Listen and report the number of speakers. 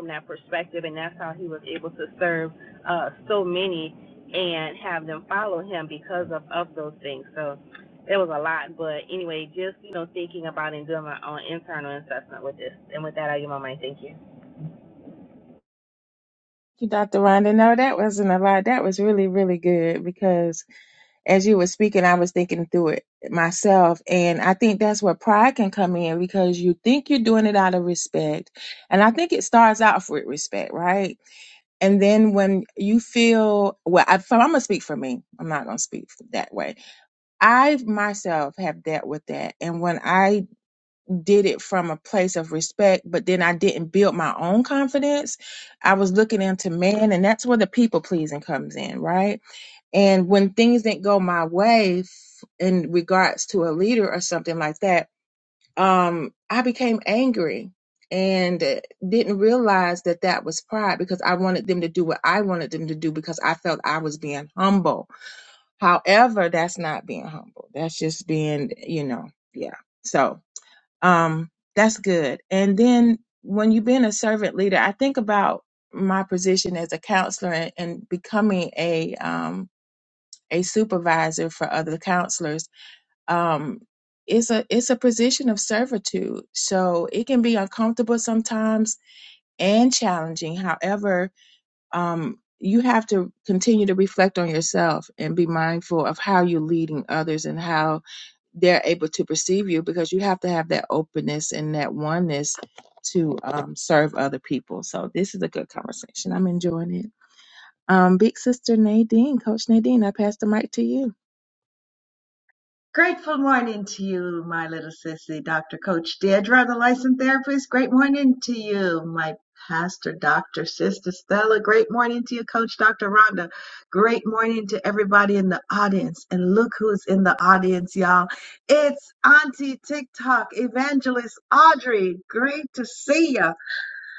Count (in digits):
3